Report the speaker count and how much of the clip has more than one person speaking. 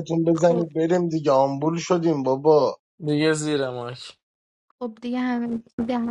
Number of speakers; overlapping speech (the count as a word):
three, about 5%